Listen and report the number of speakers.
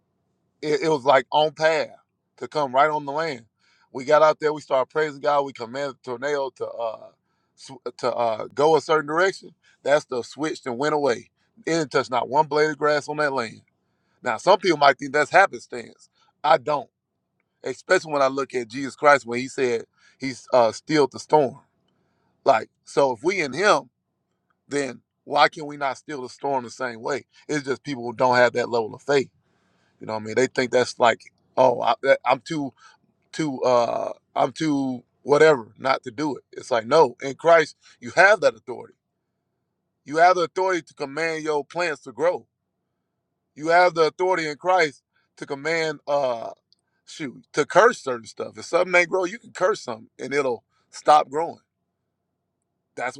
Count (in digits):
1